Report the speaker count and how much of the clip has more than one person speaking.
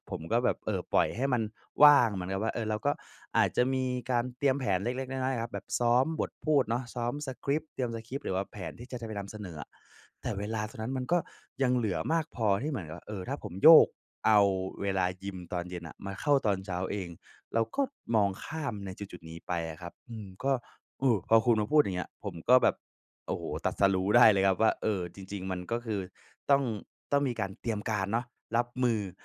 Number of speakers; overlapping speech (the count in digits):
1, no overlap